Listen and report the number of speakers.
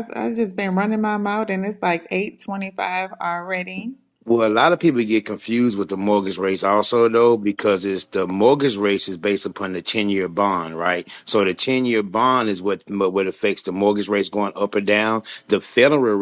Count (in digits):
2